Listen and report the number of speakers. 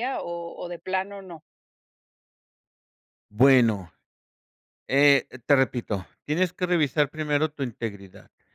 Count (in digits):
2